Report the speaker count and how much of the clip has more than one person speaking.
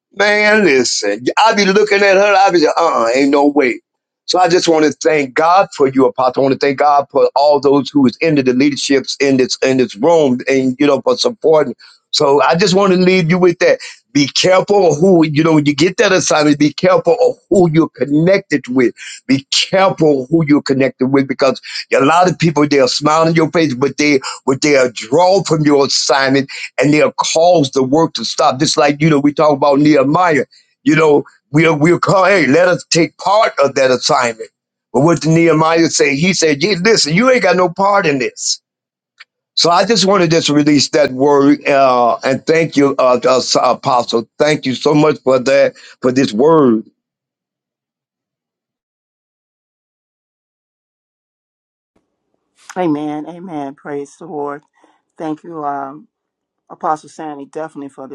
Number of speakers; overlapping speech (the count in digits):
2, no overlap